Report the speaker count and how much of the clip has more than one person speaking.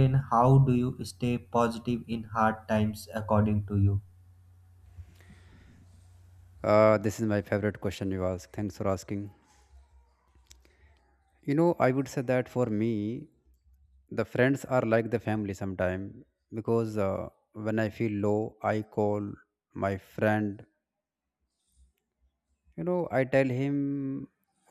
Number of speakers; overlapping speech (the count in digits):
2, no overlap